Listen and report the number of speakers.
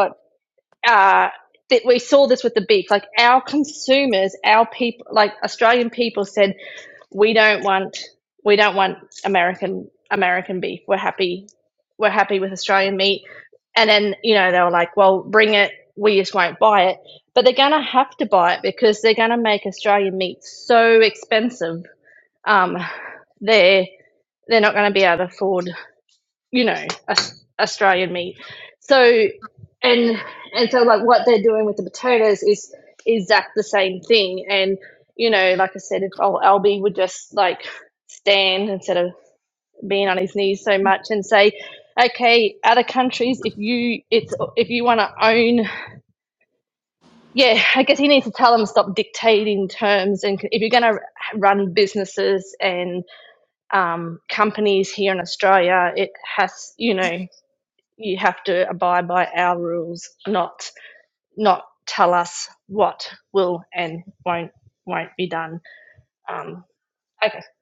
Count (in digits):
1